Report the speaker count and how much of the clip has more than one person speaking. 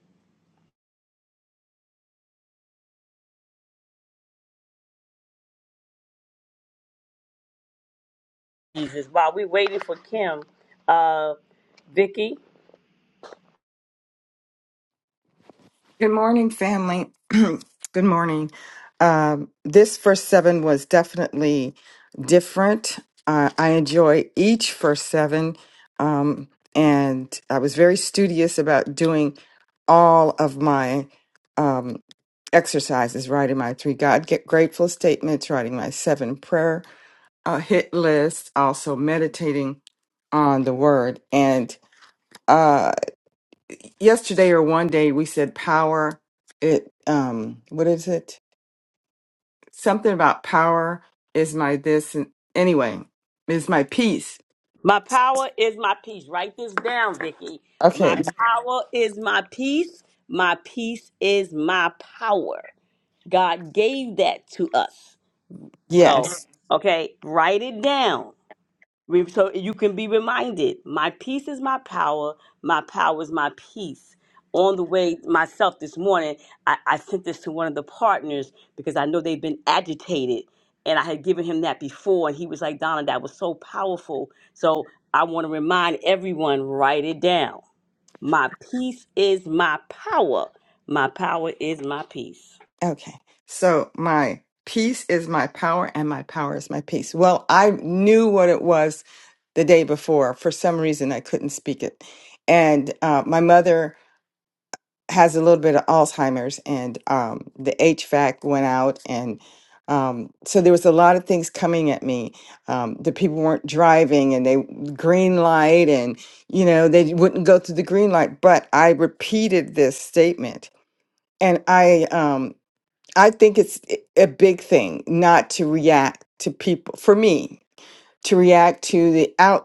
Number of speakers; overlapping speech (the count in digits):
2, under 1%